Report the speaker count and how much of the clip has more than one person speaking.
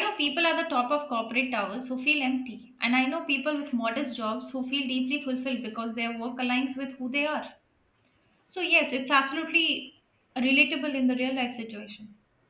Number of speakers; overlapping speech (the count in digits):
1, no overlap